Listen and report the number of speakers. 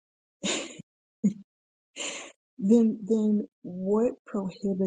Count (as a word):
one